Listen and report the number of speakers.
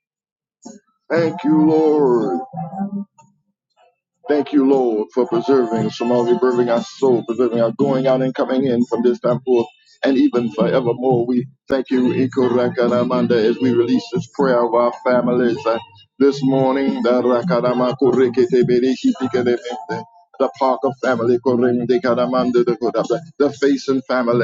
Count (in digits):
1